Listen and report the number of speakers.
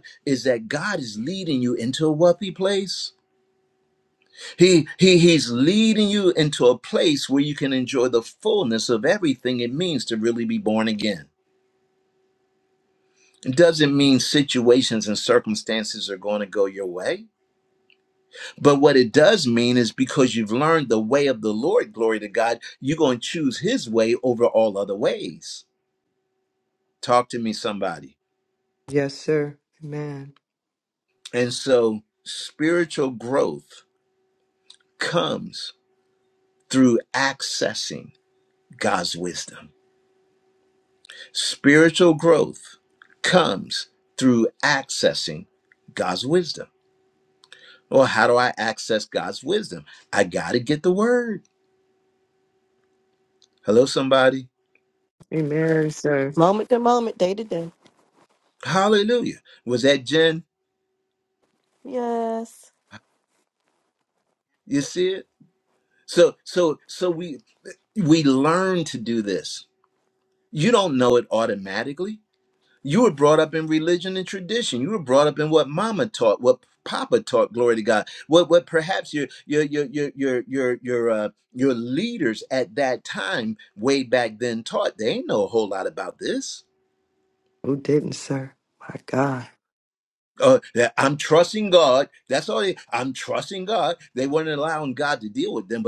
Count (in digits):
3